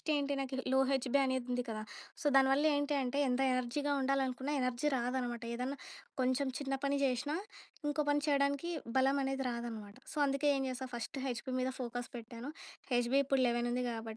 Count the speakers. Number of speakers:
1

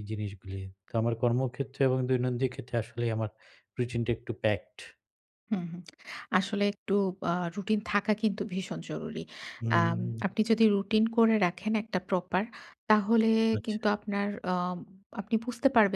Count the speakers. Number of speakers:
2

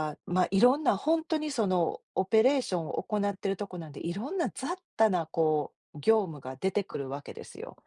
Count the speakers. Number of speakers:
1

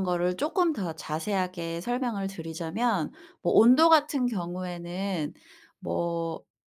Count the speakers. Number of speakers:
1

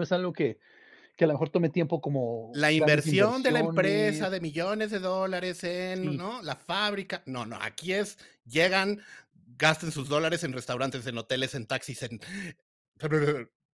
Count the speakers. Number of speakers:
2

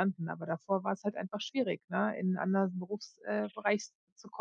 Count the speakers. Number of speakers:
1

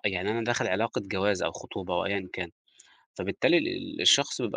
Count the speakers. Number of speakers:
1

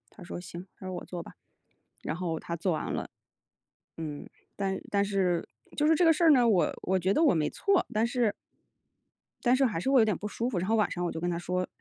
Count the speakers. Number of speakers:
1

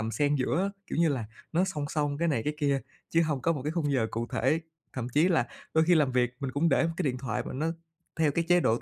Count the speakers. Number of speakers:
1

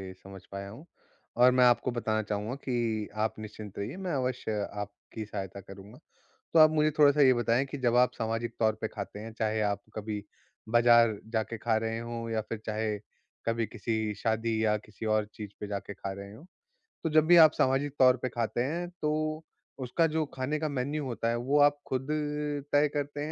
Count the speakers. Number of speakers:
1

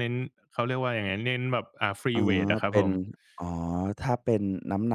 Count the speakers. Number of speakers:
2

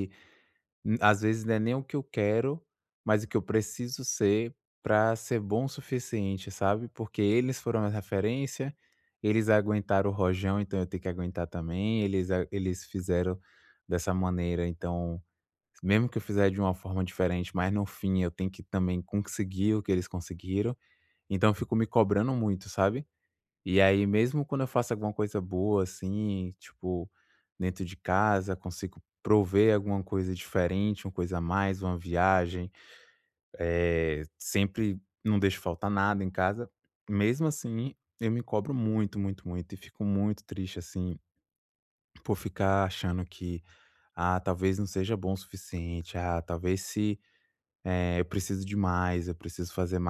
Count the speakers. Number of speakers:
1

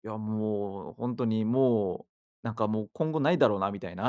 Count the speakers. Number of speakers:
1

